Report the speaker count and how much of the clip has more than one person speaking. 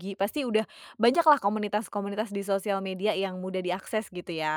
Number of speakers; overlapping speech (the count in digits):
1, no overlap